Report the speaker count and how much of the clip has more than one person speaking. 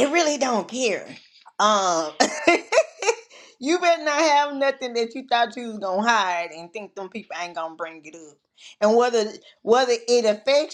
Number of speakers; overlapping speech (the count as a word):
one, no overlap